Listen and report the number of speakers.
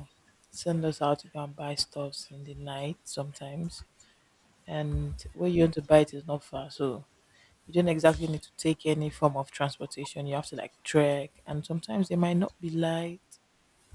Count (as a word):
one